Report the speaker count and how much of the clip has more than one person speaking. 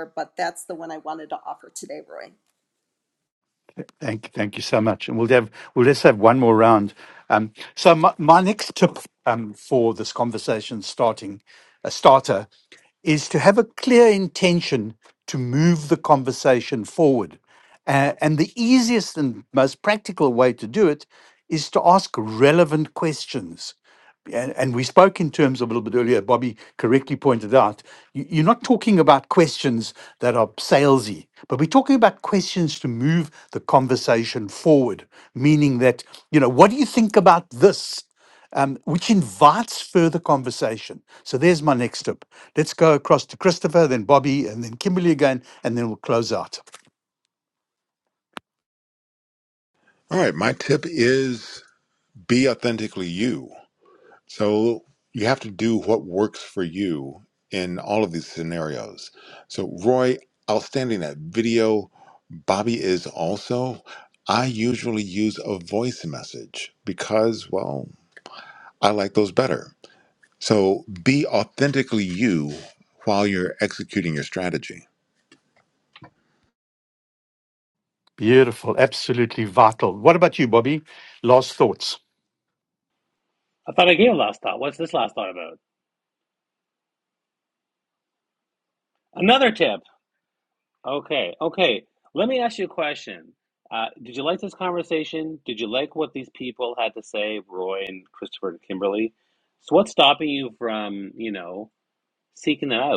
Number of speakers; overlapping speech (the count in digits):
4, no overlap